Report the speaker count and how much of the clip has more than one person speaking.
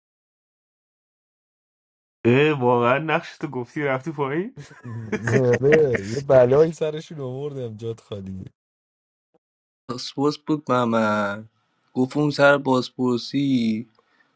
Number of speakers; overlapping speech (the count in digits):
3, no overlap